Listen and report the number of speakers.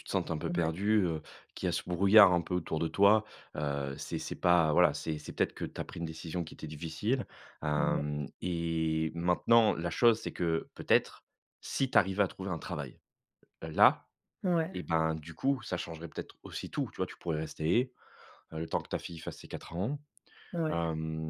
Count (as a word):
two